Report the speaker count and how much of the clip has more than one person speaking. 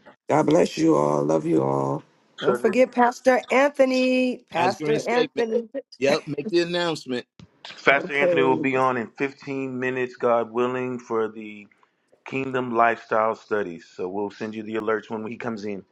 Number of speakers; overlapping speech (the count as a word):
four, about 11%